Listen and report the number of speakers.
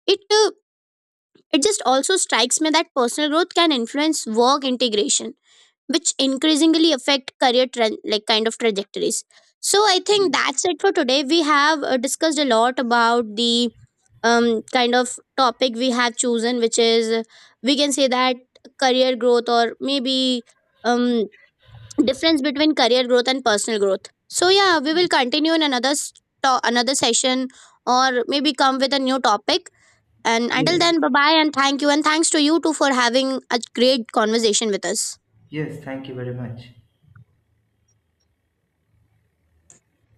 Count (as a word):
two